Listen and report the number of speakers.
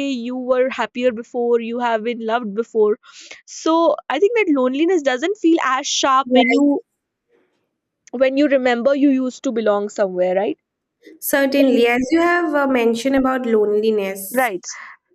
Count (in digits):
2